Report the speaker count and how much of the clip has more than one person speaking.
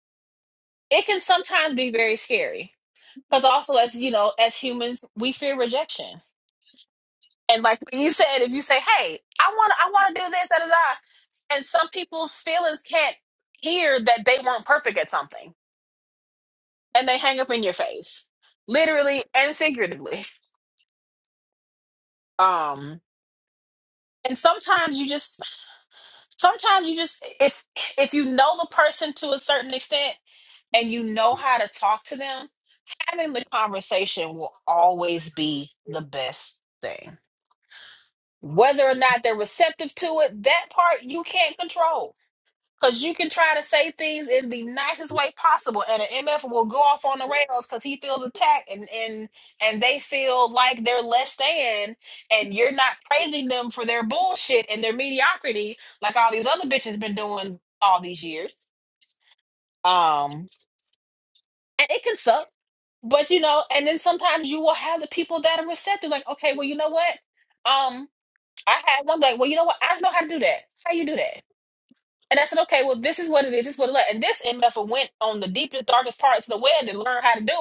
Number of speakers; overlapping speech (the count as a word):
one, no overlap